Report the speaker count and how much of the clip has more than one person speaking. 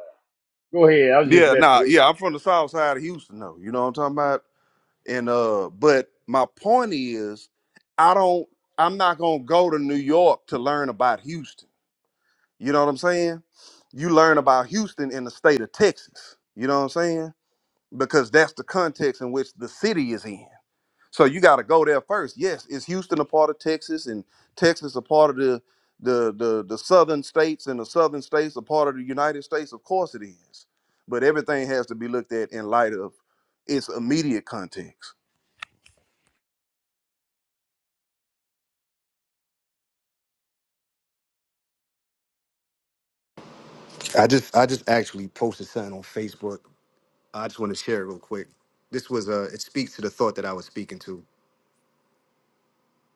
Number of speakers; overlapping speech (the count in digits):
3, about 1%